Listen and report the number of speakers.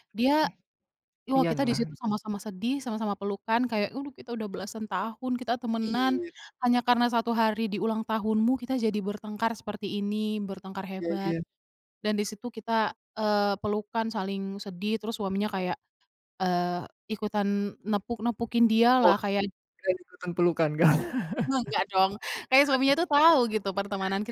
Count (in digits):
2